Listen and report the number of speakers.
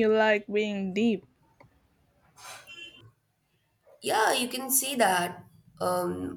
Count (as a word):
two